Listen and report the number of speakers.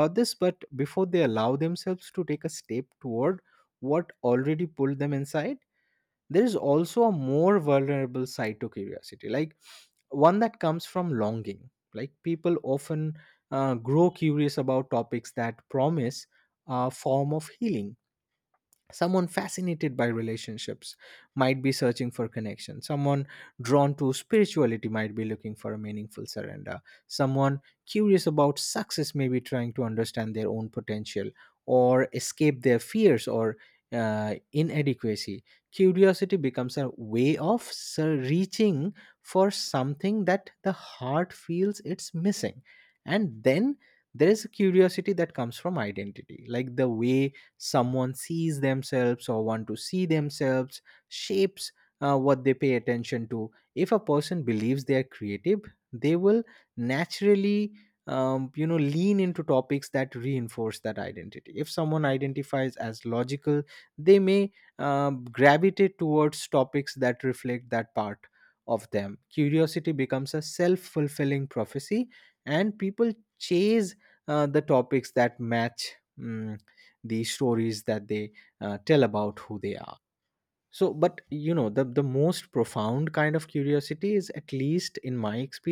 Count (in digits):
1